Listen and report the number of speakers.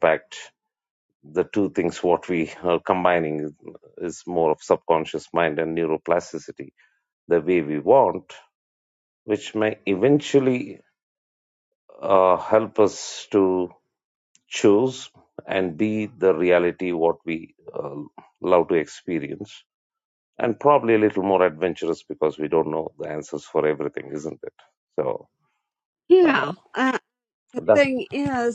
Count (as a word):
two